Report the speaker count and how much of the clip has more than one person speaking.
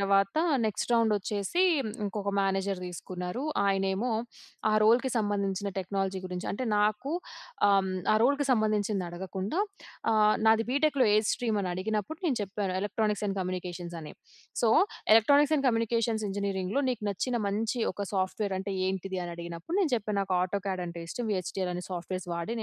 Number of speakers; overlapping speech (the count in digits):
1, no overlap